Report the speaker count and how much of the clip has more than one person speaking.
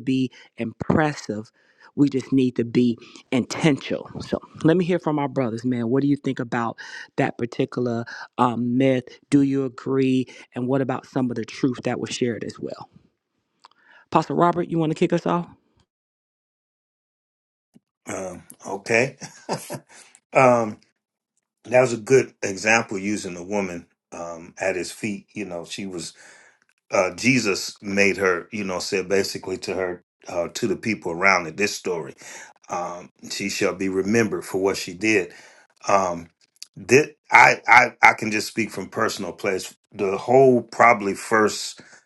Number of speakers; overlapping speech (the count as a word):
two, no overlap